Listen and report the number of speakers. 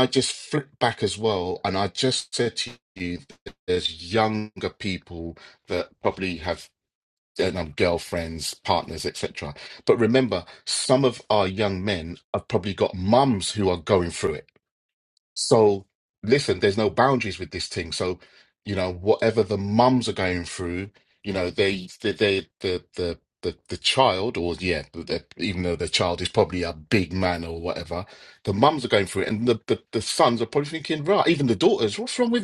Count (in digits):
1